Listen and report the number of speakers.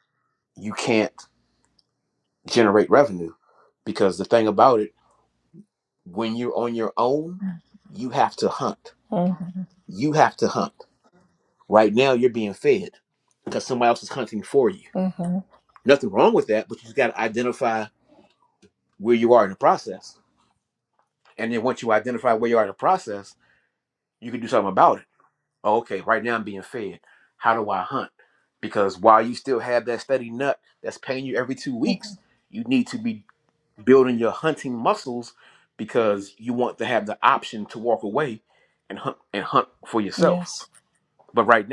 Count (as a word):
two